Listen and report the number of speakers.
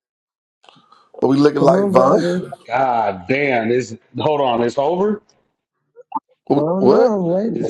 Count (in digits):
3